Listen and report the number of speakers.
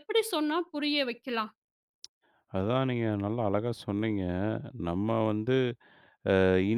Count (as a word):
two